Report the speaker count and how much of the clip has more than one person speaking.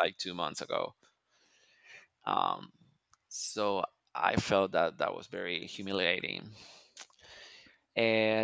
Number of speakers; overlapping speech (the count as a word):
one, no overlap